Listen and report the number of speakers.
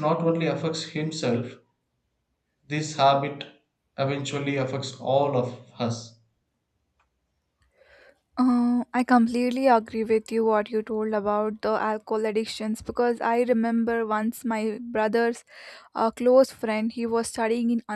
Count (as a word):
two